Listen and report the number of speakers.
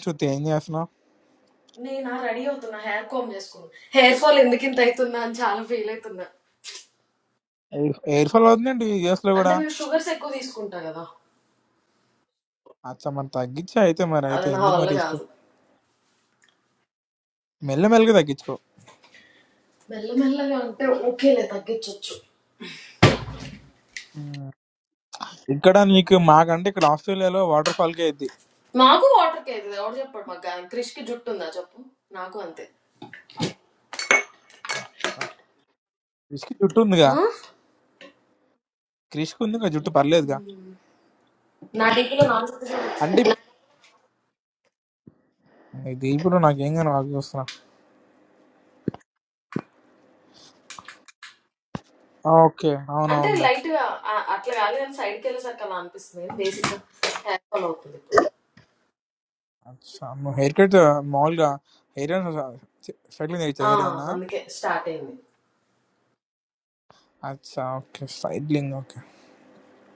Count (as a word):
two